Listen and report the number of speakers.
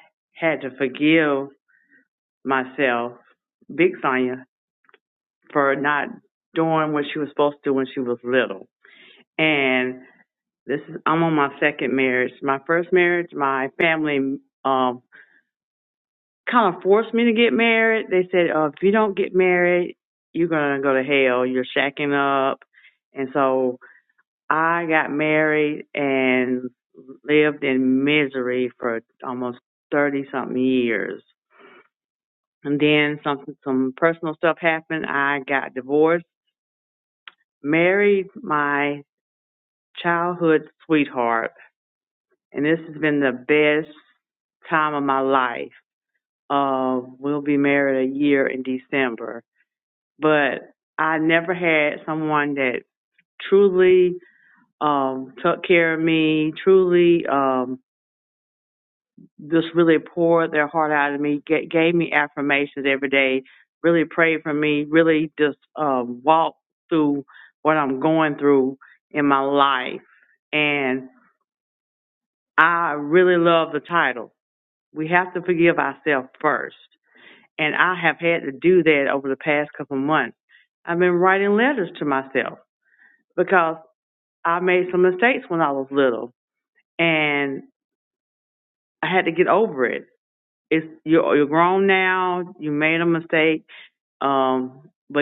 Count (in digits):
1